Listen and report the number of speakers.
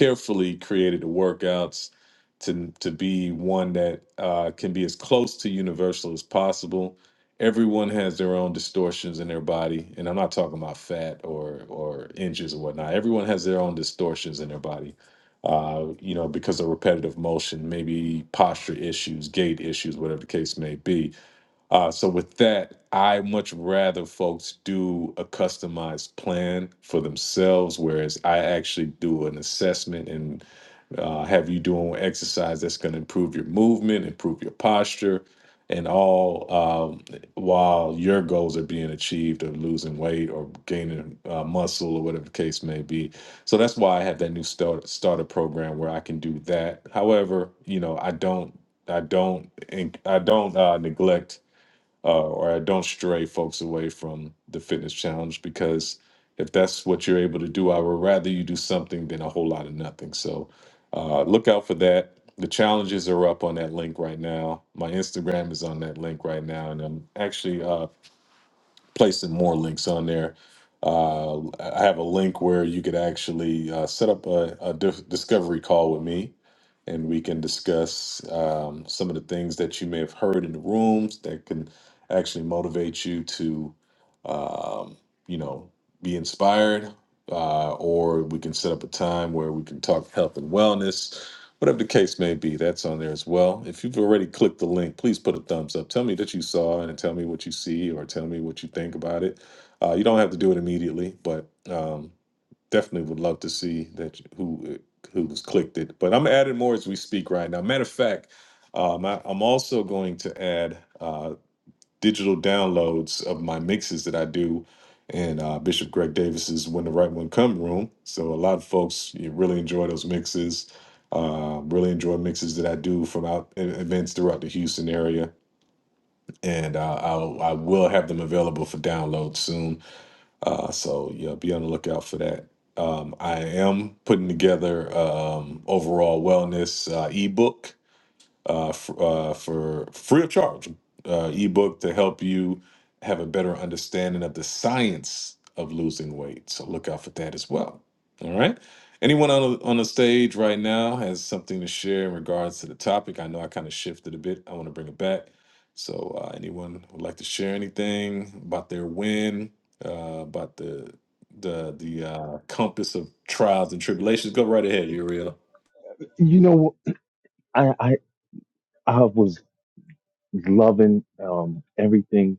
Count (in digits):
2